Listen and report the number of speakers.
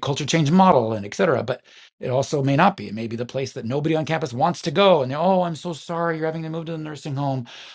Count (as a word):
one